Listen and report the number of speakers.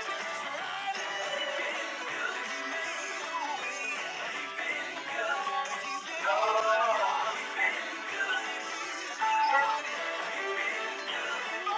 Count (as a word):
zero